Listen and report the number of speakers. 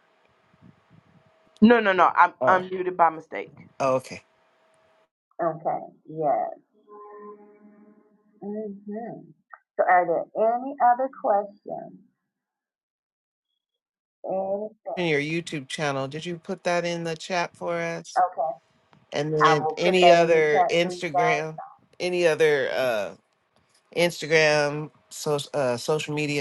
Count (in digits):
3